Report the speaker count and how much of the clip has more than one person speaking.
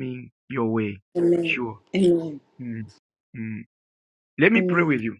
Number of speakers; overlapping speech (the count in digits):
2, about 13%